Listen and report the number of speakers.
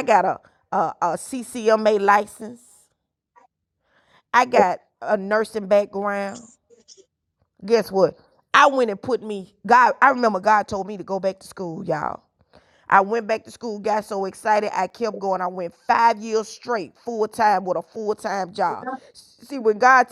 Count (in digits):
1